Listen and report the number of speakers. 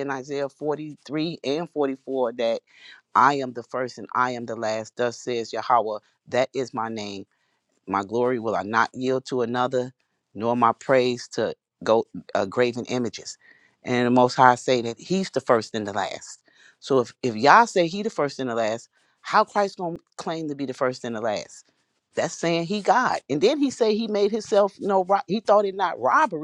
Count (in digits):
1